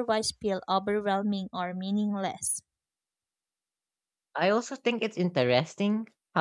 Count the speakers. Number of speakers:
two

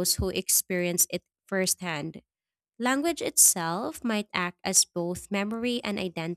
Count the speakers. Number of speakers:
one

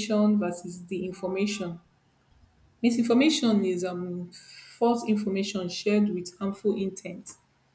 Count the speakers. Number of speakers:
one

